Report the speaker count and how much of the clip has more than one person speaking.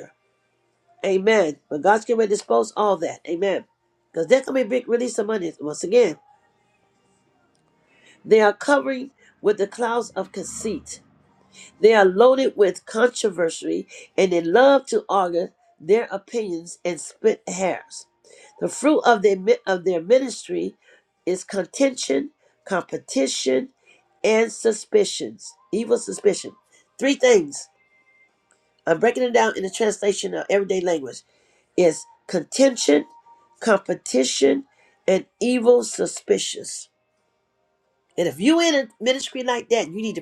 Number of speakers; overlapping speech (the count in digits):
1, no overlap